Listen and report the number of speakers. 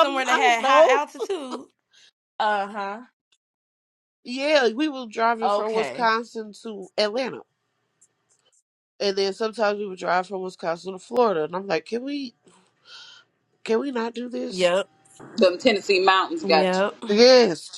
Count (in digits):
3